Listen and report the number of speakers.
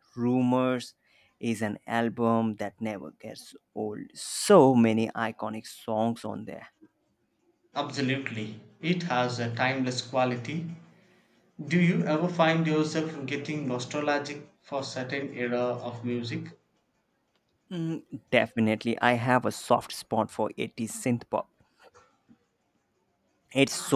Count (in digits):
2